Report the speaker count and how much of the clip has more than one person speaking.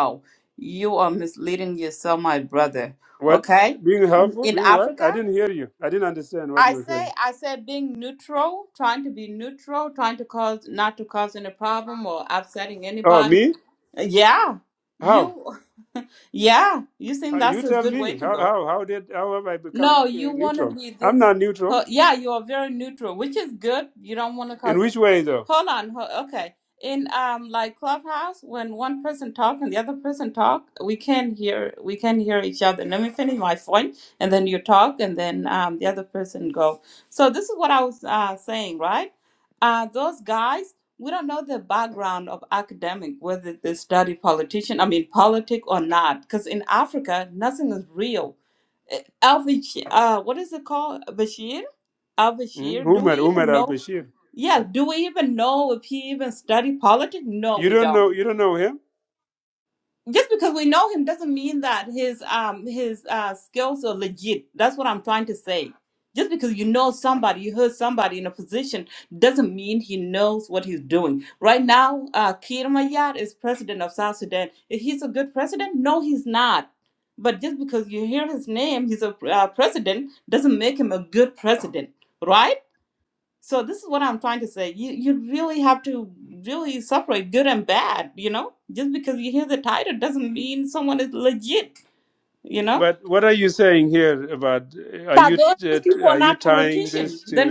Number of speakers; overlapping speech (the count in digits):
2, about 10%